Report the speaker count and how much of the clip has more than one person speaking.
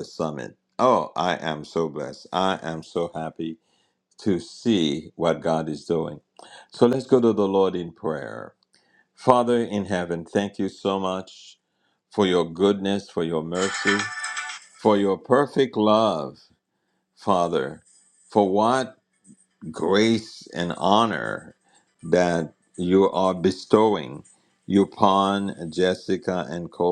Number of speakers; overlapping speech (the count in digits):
1, no overlap